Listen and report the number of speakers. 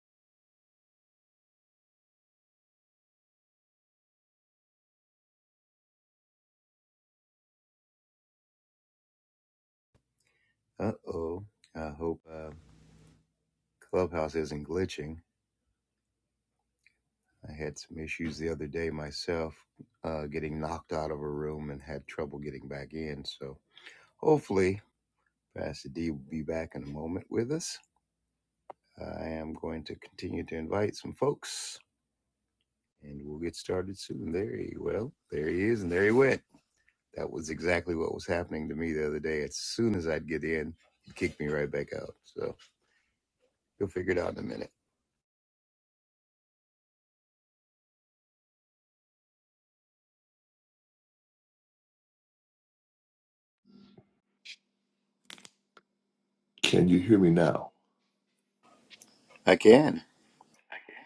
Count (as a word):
two